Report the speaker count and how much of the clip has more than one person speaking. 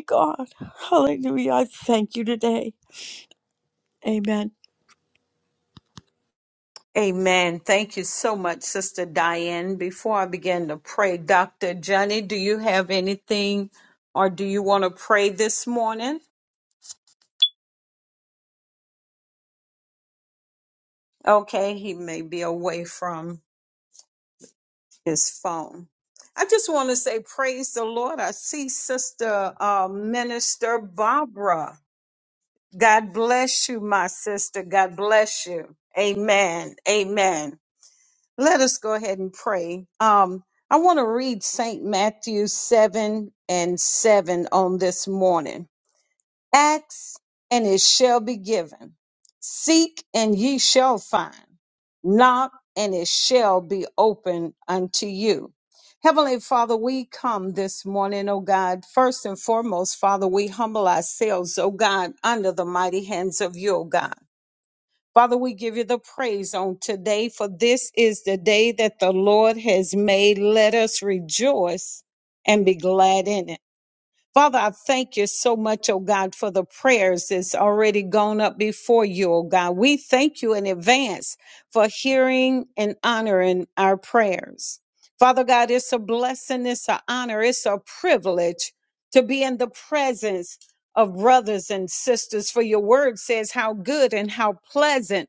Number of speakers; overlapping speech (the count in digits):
2, no overlap